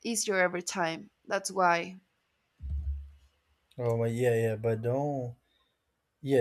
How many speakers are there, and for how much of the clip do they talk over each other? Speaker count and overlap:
2, no overlap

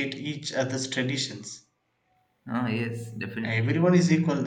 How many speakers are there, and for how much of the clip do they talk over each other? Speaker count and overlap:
2, about 7%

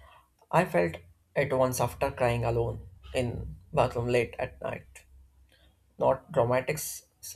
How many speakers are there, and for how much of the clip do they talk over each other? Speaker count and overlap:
1, no overlap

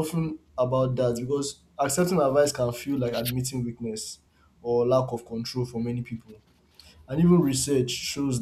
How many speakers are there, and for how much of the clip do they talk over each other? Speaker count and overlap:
1, no overlap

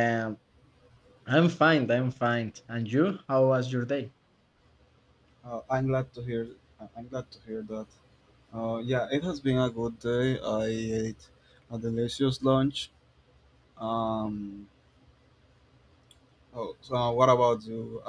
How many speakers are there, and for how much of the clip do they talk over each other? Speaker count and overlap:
2, no overlap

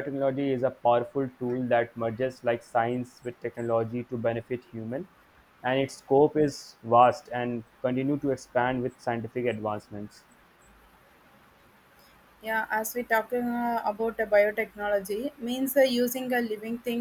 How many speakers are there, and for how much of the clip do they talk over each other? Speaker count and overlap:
2, no overlap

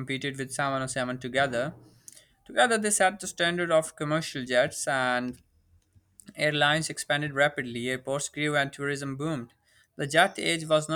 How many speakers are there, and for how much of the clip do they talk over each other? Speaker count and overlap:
1, no overlap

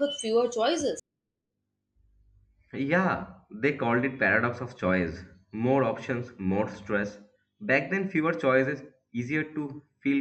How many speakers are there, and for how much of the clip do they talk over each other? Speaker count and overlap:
2, no overlap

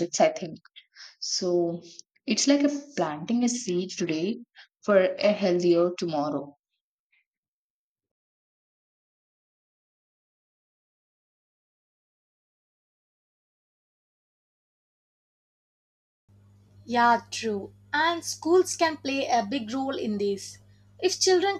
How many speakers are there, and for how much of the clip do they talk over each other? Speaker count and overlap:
2, no overlap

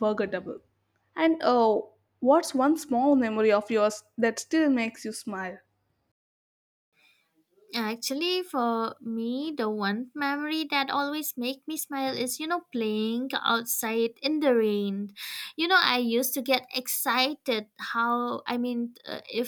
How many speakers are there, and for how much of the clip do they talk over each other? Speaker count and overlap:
2, no overlap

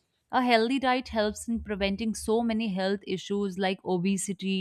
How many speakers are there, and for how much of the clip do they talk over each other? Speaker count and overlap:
1, no overlap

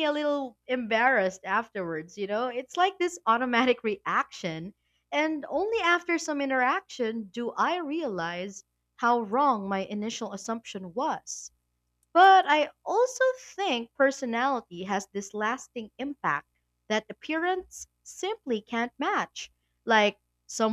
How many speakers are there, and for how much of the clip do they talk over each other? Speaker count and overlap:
1, no overlap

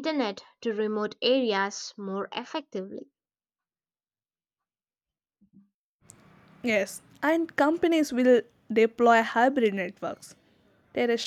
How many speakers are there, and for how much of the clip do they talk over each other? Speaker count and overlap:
2, no overlap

